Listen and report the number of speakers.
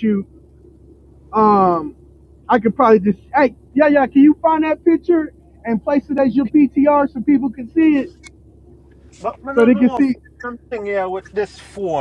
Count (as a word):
two